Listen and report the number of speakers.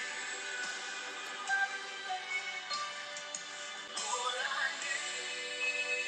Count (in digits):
0